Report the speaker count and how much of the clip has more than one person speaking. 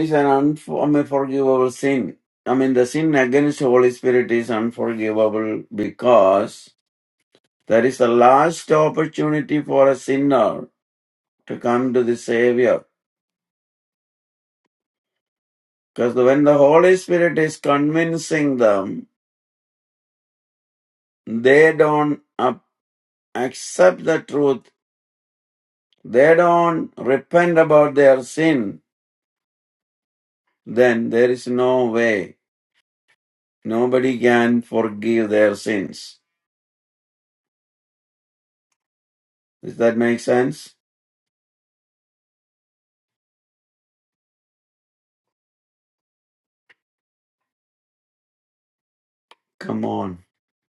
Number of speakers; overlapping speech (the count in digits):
1, no overlap